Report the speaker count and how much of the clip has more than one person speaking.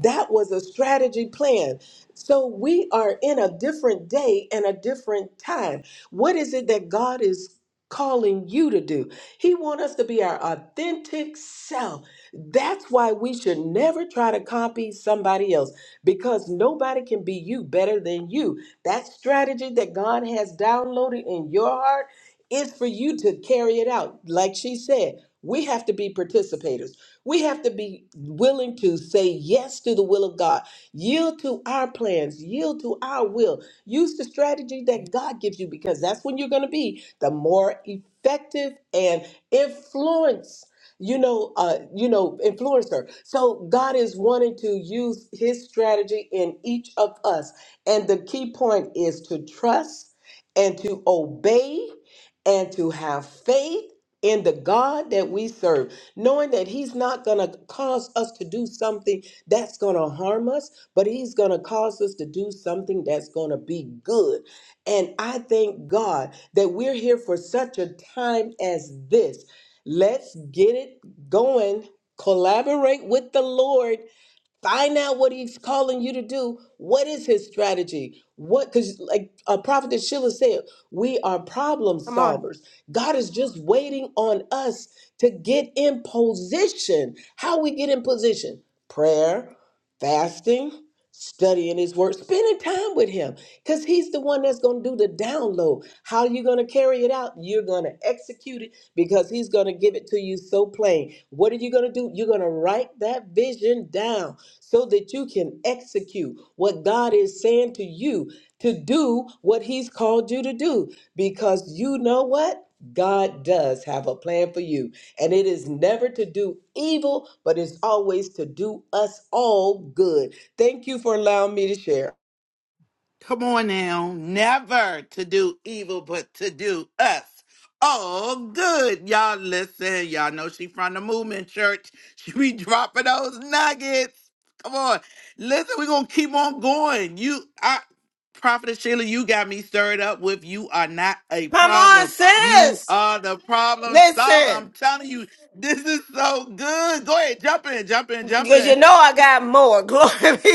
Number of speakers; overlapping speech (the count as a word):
three, about 2%